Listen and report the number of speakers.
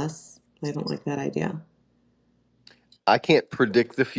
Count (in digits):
2